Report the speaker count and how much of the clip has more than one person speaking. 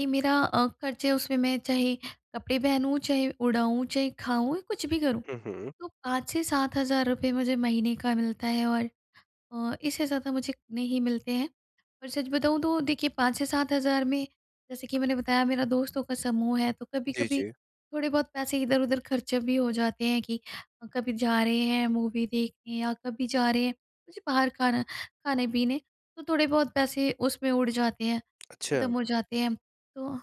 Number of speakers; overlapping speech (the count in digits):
2, about 2%